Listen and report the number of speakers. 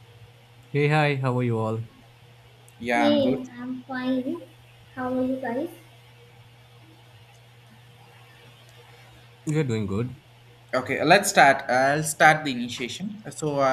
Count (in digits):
3